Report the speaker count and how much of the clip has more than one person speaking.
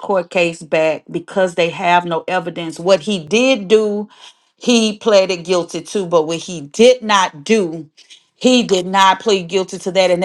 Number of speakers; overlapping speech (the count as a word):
one, no overlap